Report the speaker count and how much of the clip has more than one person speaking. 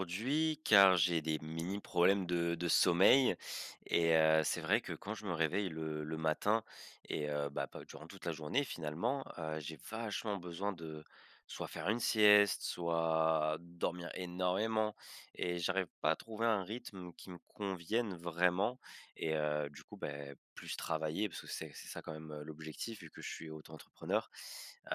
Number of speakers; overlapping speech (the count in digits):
1, no overlap